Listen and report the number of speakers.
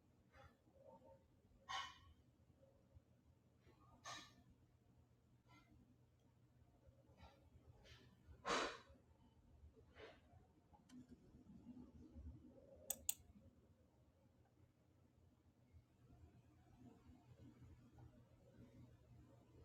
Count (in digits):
0